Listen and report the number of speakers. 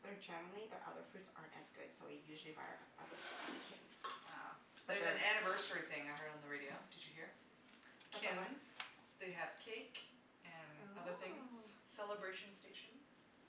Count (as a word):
two